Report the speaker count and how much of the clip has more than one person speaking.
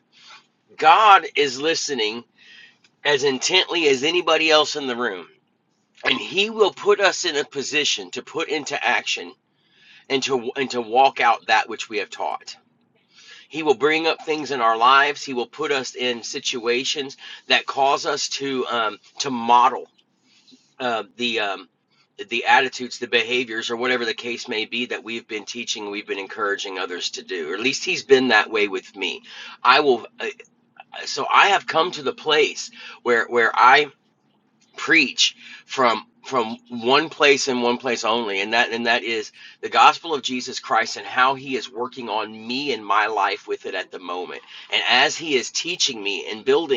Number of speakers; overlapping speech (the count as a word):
one, no overlap